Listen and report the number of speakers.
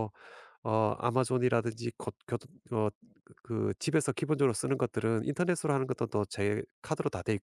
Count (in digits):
1